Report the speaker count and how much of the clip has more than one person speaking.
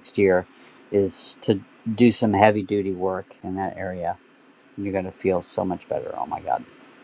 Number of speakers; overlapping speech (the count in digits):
1, no overlap